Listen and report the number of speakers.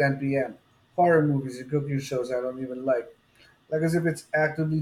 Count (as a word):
one